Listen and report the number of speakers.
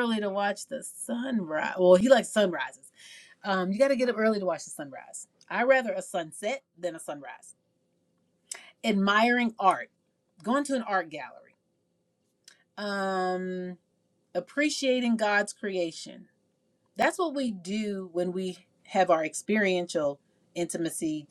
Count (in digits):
1